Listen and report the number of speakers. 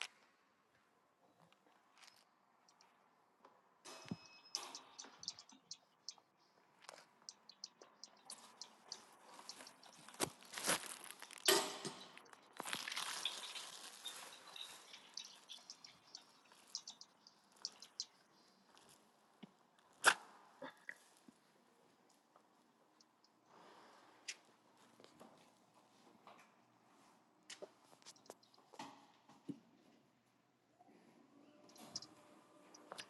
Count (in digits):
0